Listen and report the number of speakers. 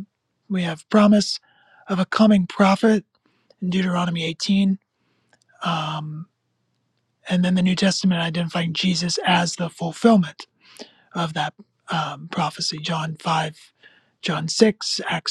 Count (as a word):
one